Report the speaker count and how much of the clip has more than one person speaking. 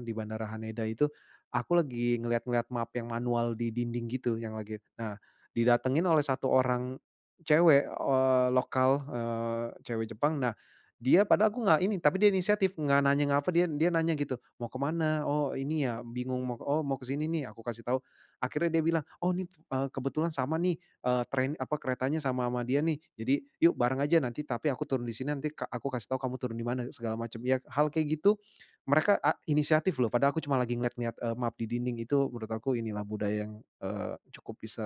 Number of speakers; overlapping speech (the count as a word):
one, no overlap